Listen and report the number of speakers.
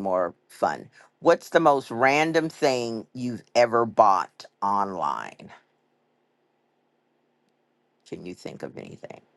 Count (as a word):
one